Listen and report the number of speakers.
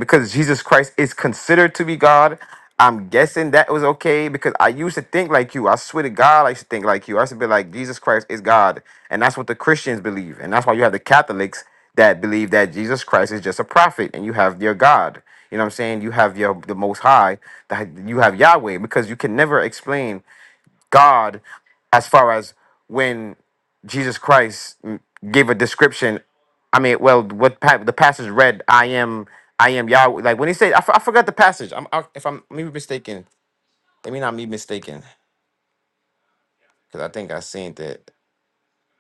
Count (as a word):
one